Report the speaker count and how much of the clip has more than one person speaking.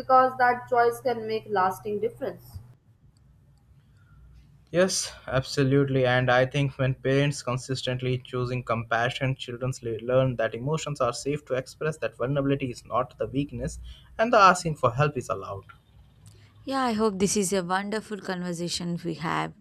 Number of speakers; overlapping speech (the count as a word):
three, no overlap